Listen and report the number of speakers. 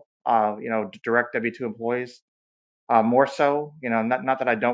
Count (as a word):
one